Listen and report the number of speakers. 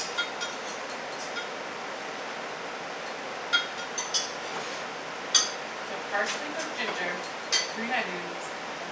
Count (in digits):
1